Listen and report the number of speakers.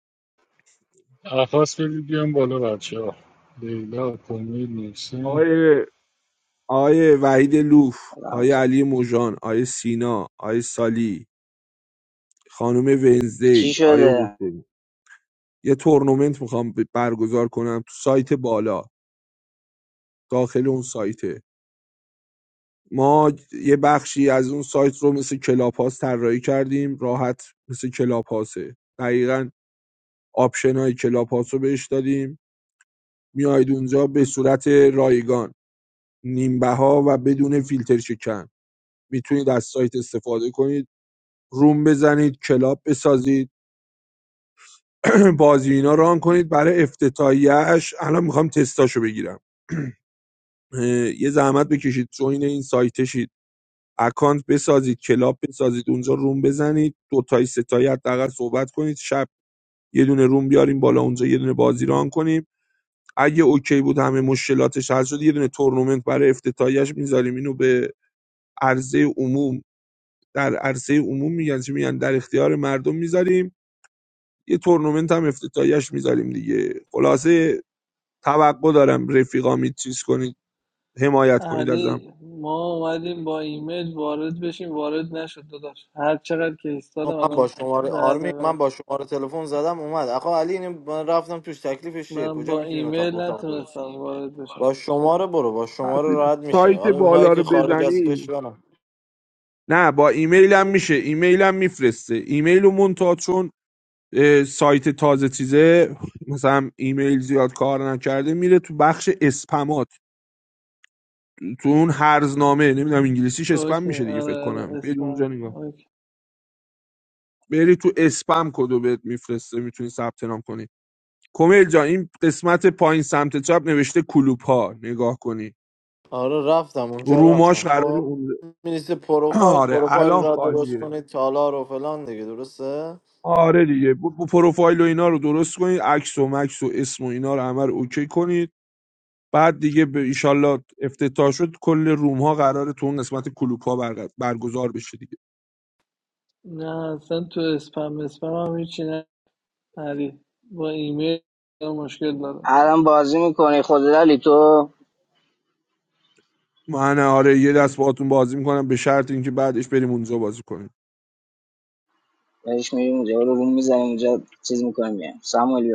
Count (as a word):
five